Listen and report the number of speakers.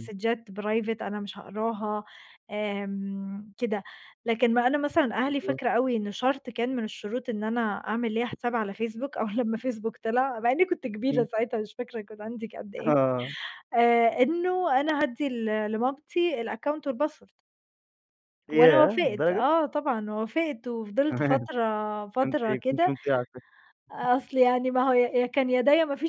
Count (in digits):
2